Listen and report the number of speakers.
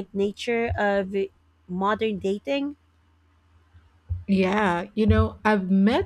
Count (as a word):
two